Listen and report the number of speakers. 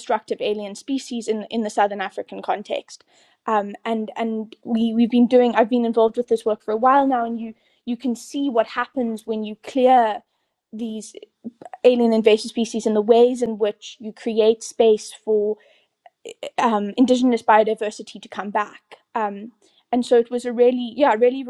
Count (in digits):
1